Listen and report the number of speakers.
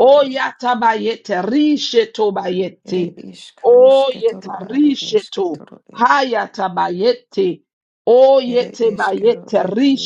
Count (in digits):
2